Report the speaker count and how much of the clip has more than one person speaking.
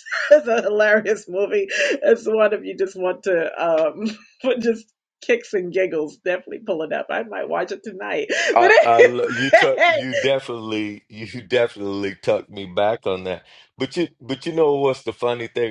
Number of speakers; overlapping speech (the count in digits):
2, about 8%